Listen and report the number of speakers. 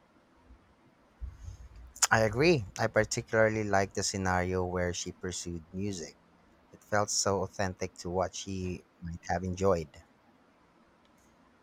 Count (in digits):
1